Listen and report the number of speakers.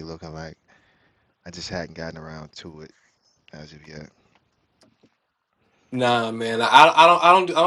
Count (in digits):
2